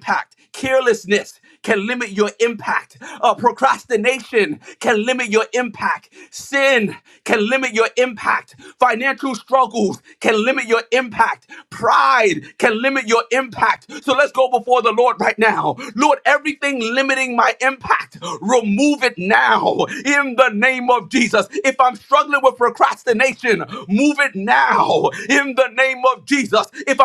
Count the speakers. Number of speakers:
1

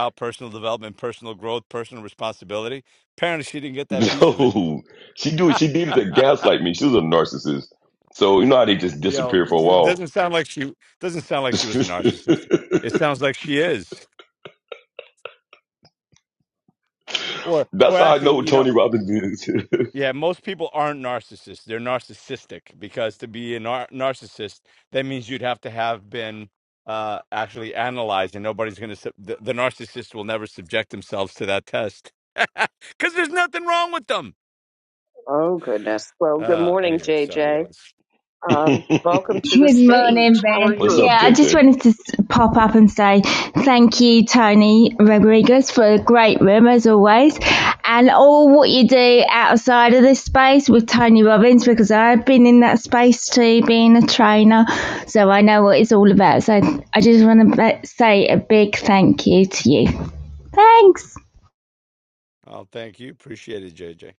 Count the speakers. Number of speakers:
4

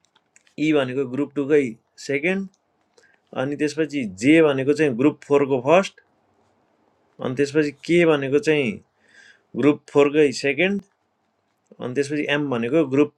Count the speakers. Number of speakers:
1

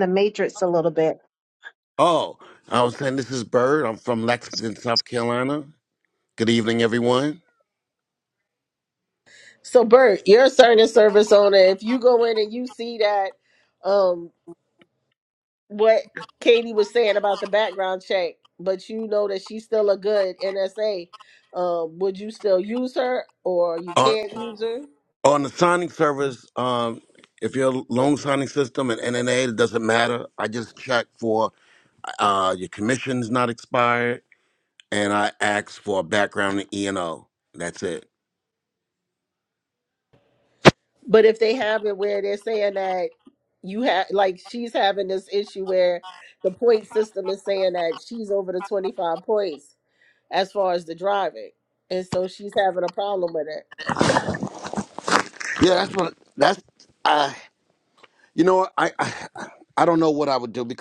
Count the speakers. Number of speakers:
3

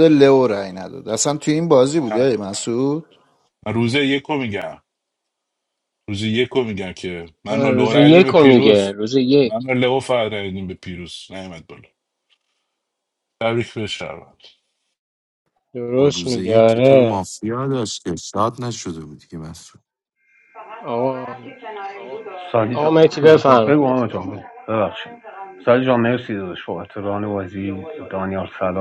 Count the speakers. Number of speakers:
5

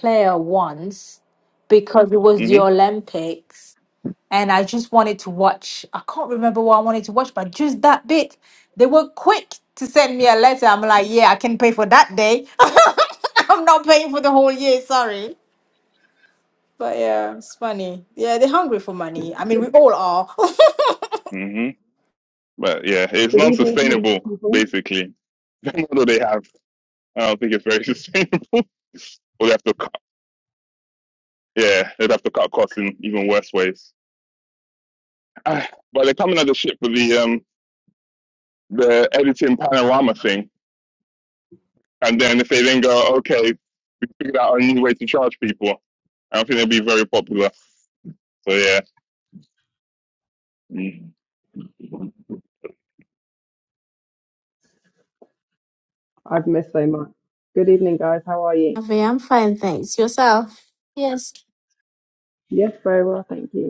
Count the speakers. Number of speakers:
4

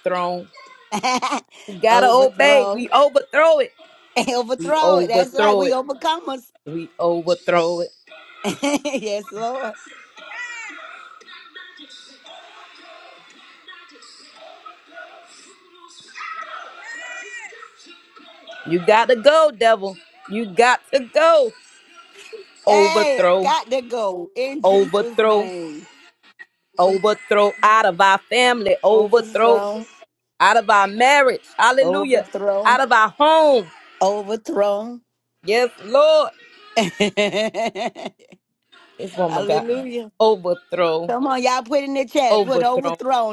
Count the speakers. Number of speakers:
2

